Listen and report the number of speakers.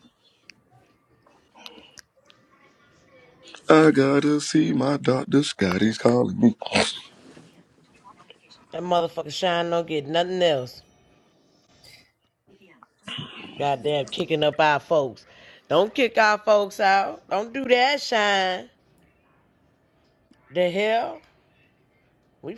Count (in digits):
2